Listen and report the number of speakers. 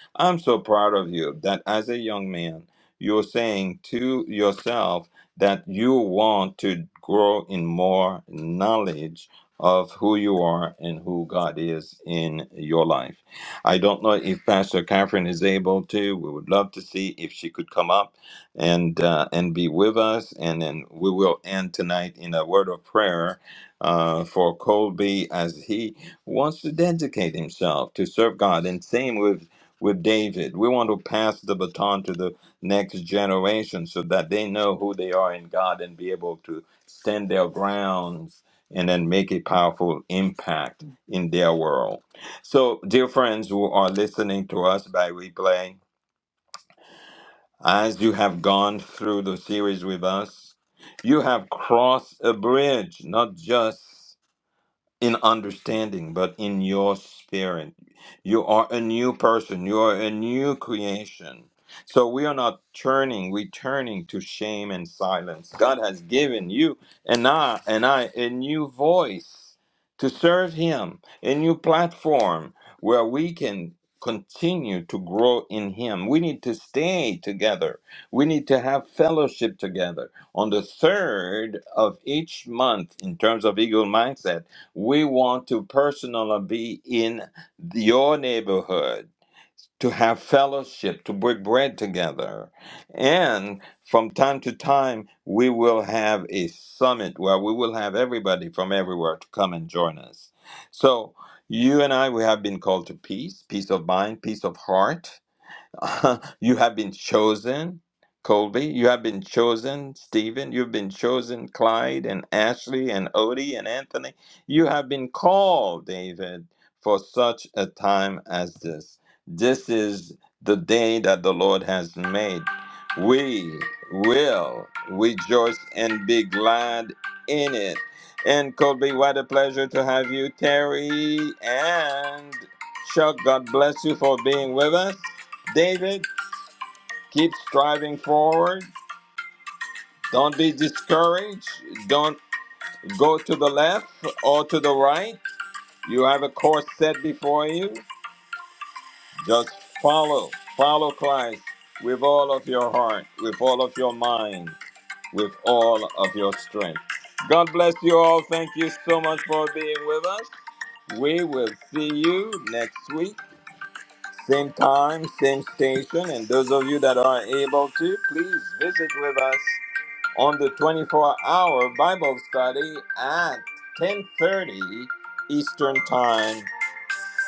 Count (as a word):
one